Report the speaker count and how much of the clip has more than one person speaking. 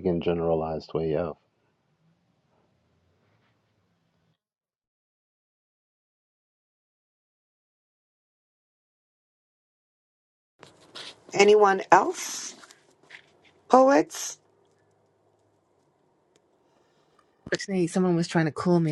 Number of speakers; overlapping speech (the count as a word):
three, no overlap